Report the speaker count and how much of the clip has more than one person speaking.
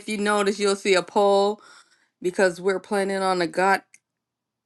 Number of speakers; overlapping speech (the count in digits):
1, no overlap